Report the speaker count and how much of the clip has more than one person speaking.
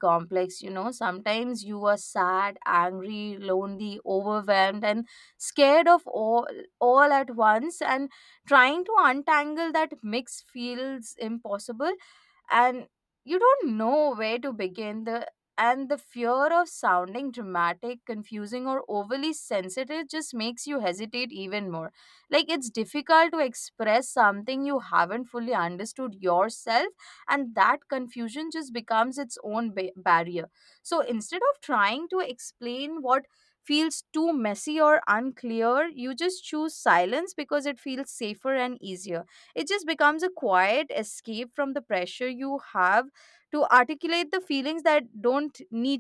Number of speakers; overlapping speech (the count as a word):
one, no overlap